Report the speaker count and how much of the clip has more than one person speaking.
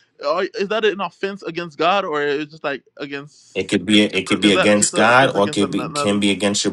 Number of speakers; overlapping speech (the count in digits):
2, about 27%